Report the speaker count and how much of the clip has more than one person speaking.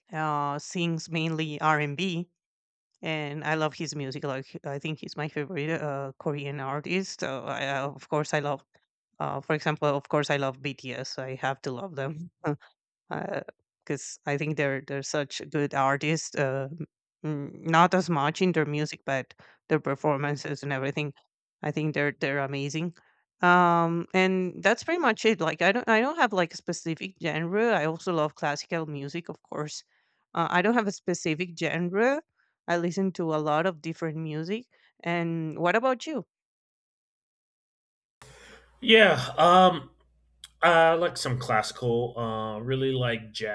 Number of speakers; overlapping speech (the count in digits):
2, no overlap